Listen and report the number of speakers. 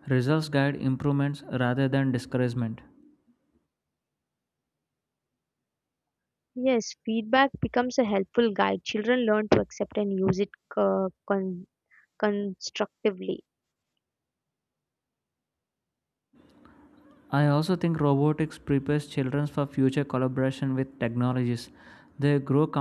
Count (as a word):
two